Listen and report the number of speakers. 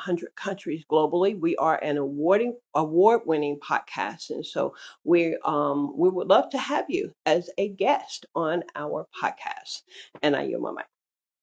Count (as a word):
one